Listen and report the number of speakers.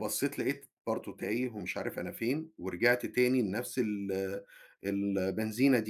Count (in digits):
1